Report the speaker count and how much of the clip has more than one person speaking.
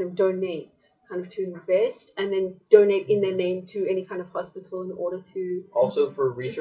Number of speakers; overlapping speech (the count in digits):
2, about 6%